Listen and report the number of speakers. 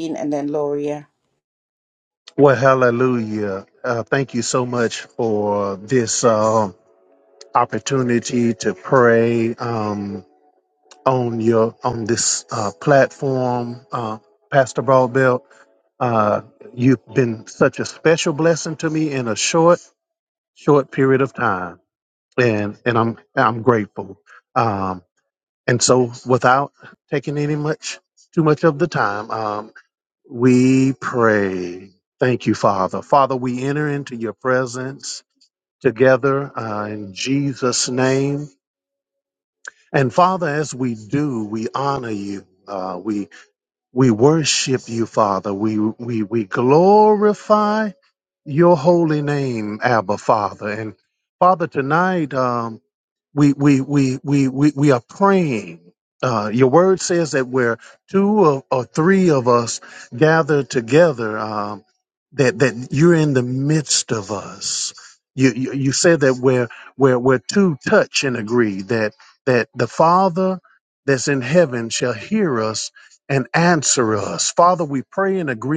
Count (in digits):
2